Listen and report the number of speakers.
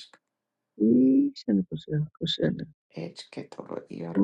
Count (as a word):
two